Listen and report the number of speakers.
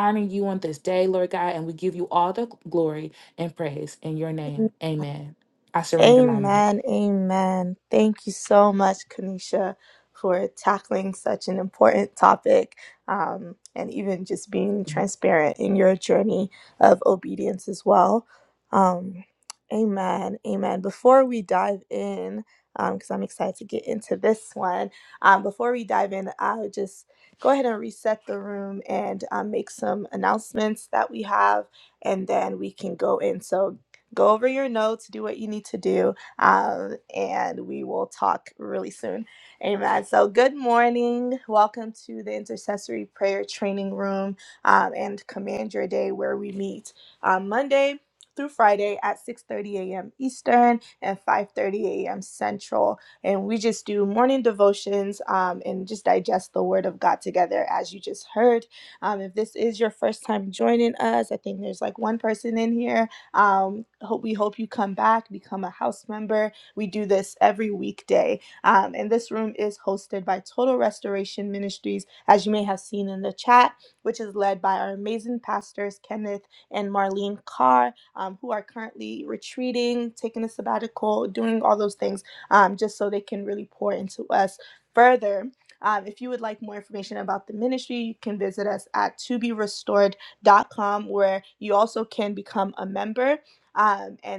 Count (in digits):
2